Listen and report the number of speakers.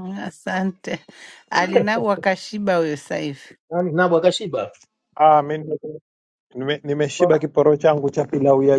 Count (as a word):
three